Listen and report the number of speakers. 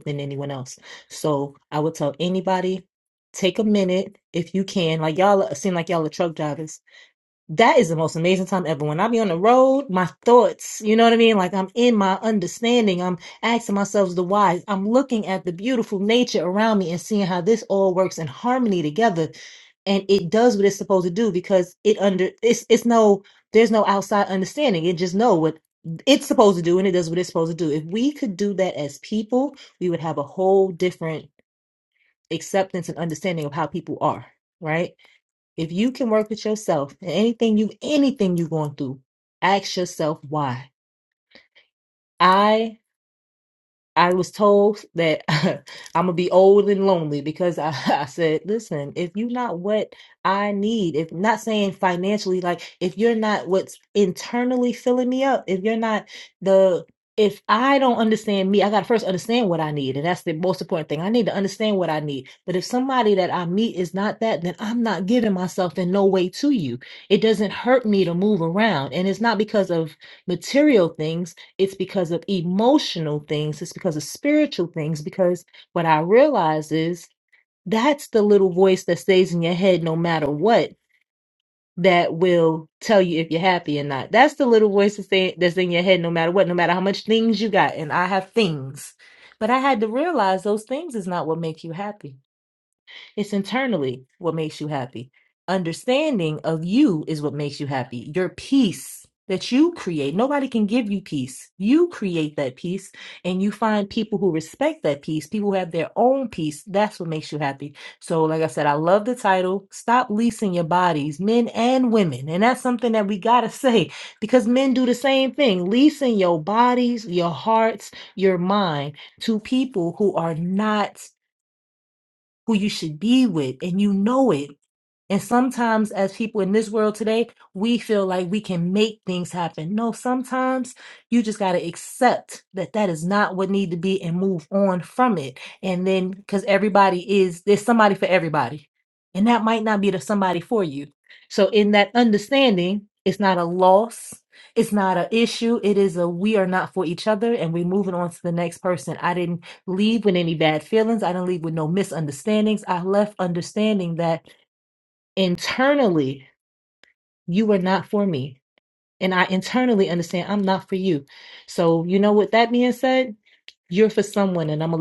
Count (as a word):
one